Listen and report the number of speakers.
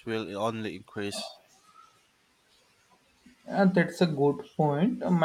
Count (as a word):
two